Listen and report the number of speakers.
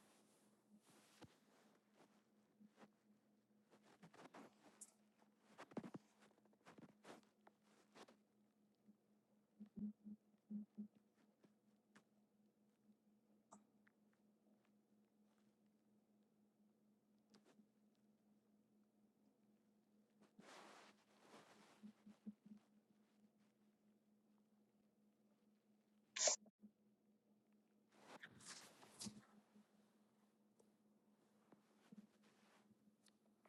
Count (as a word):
zero